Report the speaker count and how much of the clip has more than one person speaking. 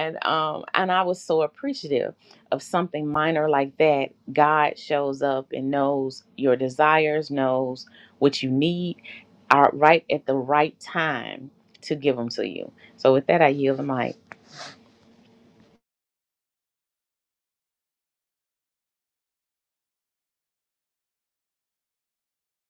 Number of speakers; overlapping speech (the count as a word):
one, no overlap